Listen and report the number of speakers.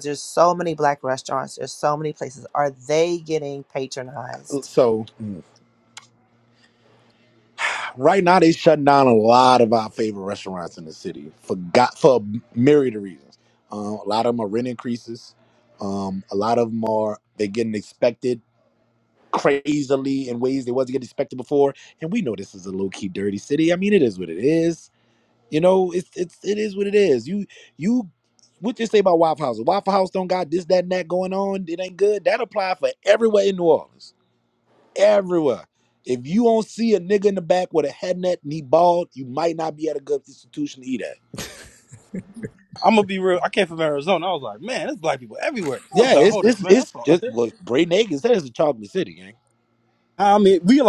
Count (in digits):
3